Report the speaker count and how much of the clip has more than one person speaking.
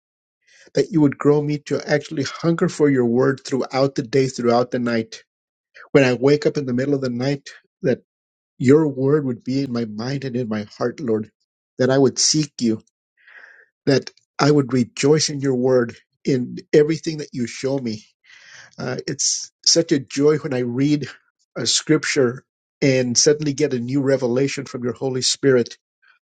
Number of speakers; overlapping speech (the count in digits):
1, no overlap